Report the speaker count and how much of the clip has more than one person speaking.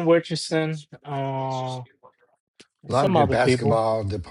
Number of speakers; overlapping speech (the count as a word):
two, about 17%